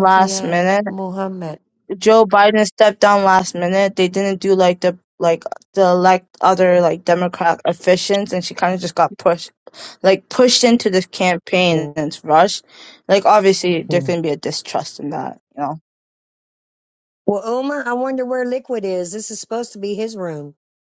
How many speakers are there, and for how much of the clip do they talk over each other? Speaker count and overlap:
3, about 5%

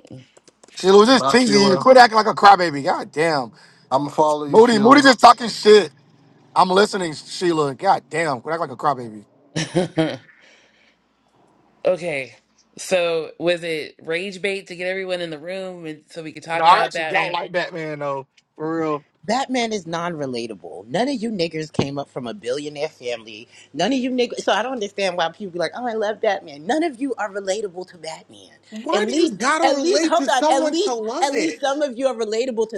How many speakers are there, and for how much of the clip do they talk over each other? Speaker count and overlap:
4, about 14%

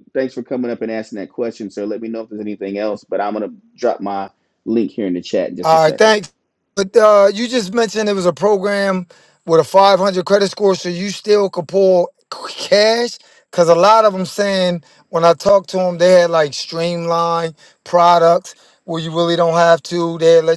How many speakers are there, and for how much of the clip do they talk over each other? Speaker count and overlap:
2, about 2%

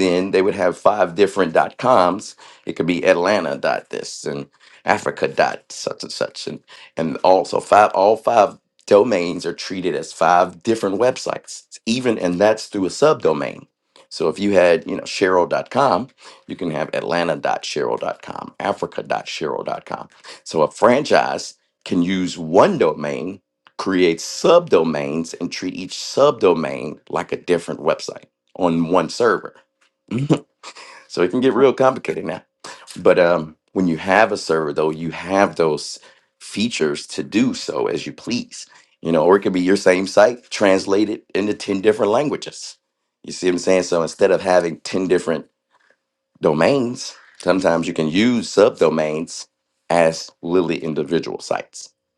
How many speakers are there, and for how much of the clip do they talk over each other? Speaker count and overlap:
1, no overlap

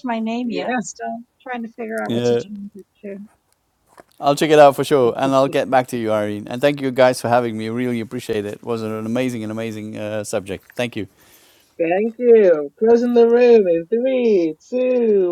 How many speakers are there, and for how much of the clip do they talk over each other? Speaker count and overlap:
3, about 5%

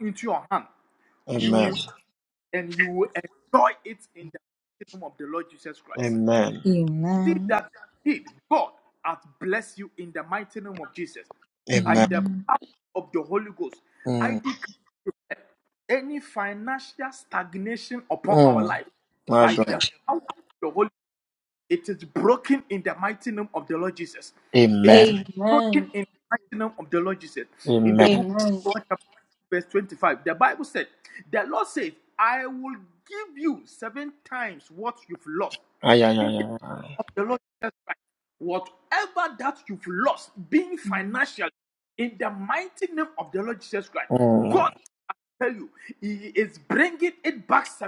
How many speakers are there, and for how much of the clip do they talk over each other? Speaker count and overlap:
3, about 9%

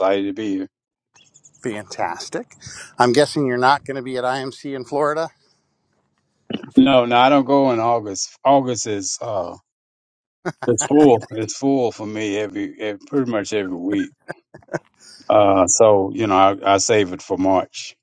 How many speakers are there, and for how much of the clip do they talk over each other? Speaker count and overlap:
2, no overlap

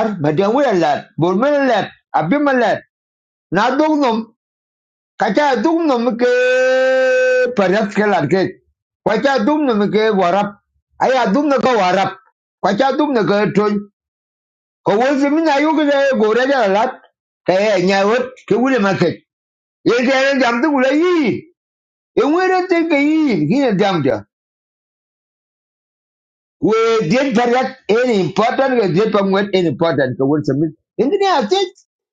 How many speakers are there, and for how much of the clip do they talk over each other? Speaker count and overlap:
1, no overlap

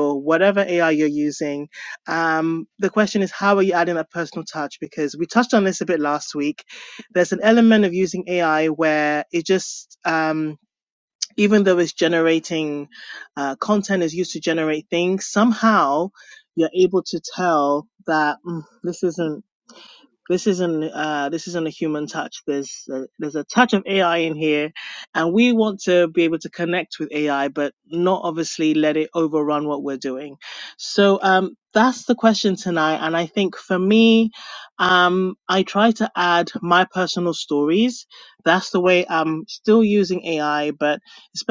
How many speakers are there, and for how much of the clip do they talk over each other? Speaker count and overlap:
1, no overlap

